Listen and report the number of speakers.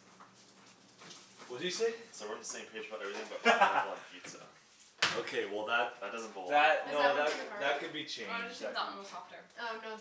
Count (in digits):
4